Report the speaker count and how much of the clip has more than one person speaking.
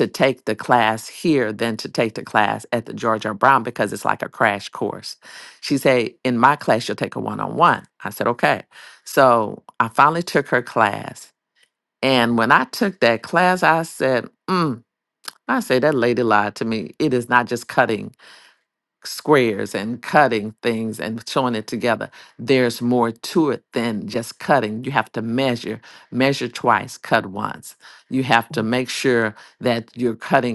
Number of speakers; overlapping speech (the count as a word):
one, no overlap